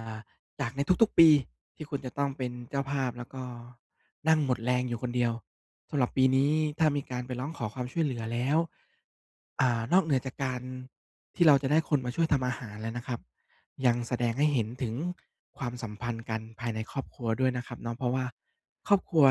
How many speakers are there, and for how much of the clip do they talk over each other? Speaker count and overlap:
1, no overlap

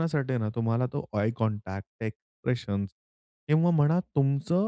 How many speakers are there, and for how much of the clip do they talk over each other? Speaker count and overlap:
1, no overlap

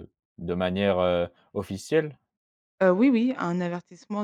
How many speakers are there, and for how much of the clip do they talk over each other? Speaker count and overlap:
2, no overlap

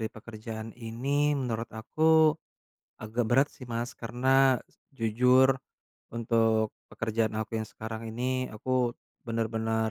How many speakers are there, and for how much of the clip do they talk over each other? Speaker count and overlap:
1, no overlap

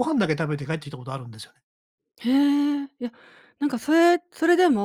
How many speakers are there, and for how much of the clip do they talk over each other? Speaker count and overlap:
2, no overlap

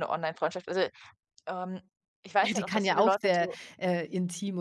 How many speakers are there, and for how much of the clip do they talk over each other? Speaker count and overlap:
2, about 25%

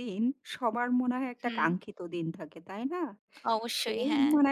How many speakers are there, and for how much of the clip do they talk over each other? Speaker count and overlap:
2, about 11%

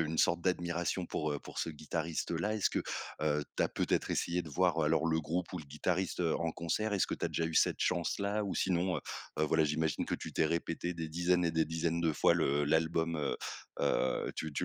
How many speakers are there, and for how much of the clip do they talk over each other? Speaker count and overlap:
1, no overlap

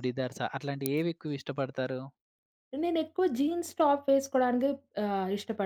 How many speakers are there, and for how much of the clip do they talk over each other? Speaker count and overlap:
2, no overlap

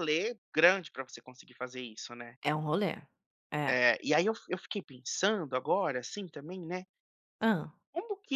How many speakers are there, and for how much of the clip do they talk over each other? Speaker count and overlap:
2, about 1%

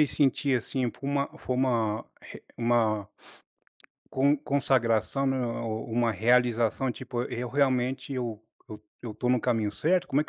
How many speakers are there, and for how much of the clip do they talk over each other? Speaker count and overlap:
1, no overlap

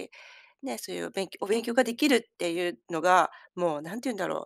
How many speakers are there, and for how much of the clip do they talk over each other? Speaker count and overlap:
1, no overlap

